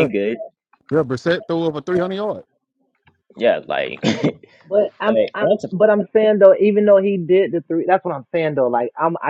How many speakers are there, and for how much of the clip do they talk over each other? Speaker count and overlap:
3, about 4%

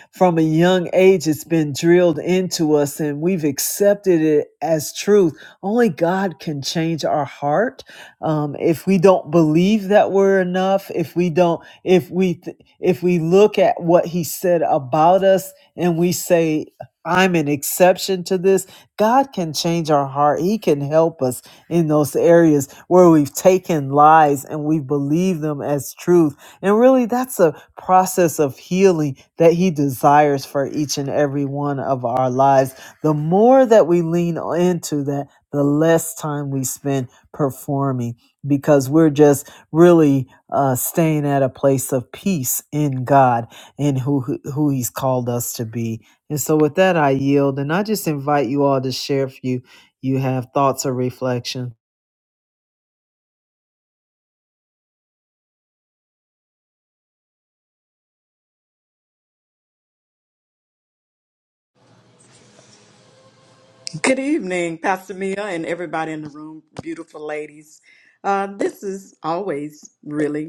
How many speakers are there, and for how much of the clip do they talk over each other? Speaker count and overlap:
2, no overlap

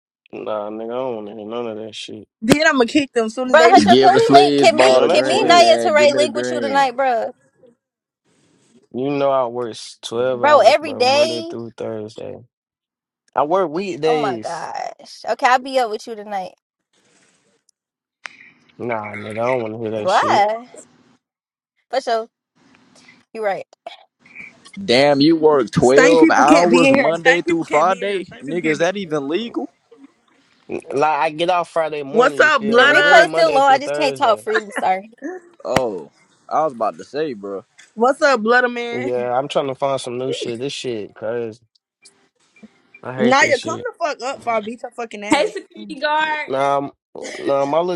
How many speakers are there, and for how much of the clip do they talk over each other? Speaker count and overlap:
5, about 25%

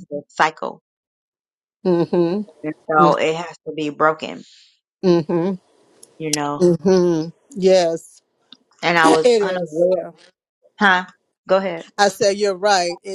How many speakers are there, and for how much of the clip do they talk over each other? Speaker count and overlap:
2, about 5%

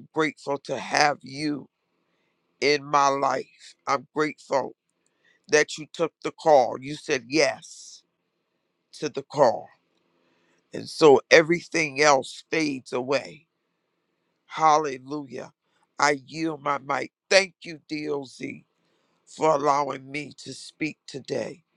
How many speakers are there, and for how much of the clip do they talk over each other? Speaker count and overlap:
1, no overlap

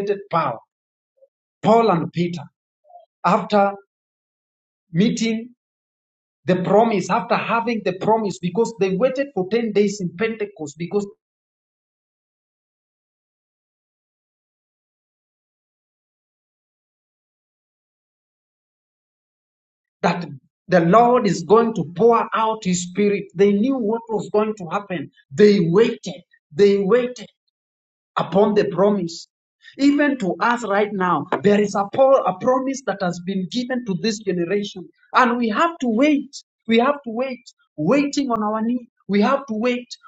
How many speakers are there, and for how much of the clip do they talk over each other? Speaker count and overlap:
1, no overlap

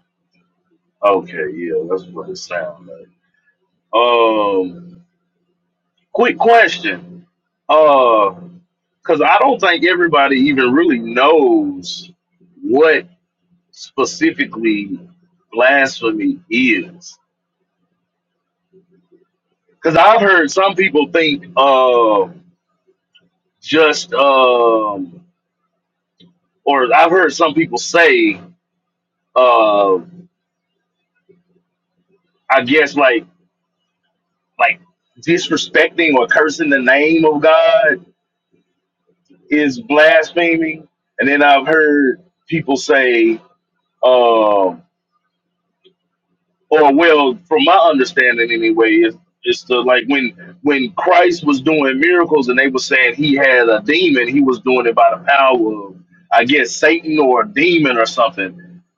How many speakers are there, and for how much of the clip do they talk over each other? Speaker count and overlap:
1, no overlap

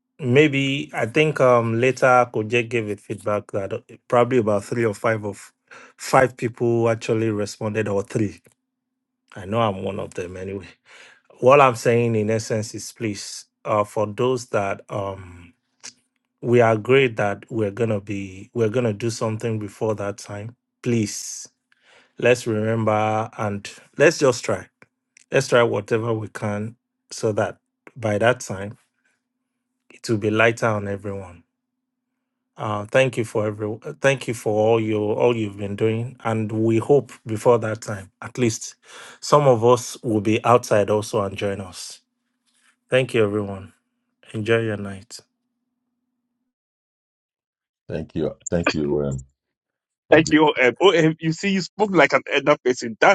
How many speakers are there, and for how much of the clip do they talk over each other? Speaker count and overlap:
3, about 1%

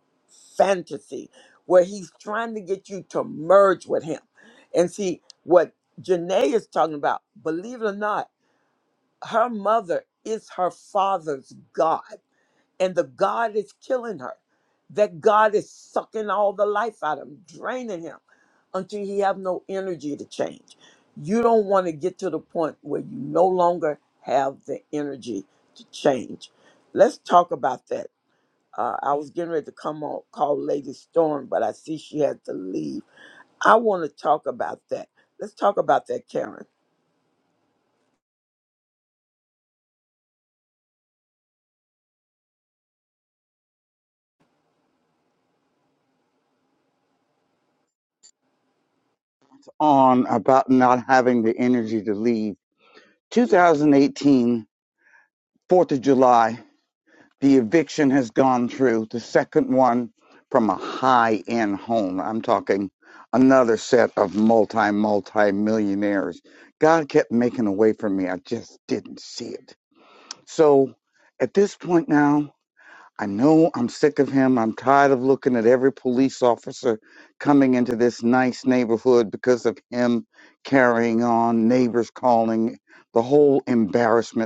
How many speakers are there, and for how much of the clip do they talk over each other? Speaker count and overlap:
2, no overlap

